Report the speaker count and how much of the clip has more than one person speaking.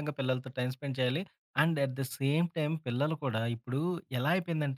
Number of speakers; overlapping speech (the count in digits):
1, no overlap